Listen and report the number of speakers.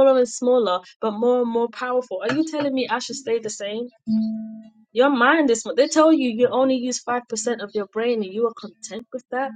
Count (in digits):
1